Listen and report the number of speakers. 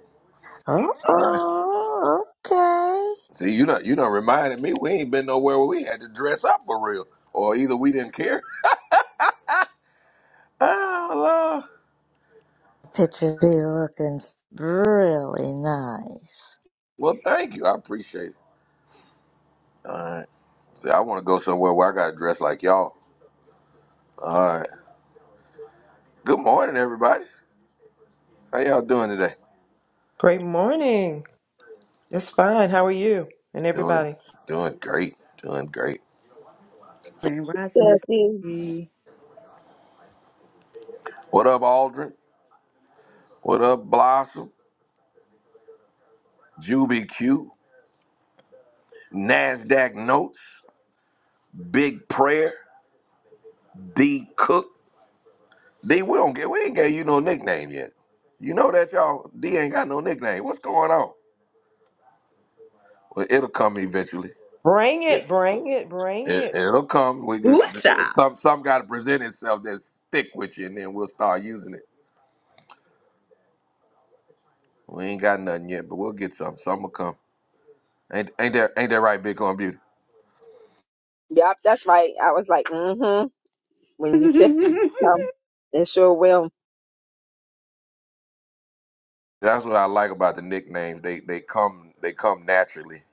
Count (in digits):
5